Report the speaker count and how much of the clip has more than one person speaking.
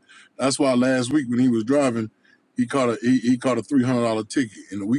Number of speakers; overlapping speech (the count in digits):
1, no overlap